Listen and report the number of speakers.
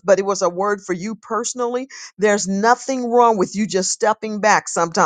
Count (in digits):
1